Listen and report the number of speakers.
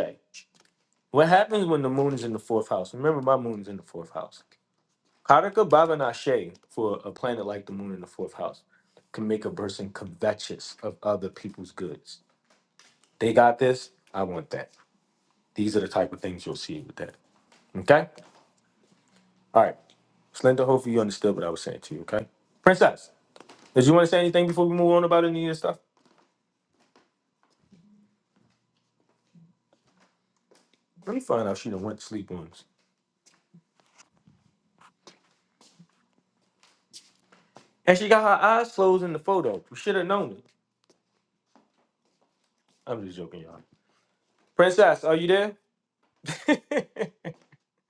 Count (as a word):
one